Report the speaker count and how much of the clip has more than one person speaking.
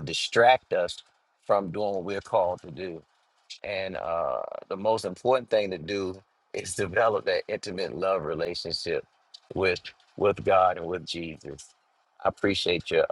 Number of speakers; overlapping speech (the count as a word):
one, no overlap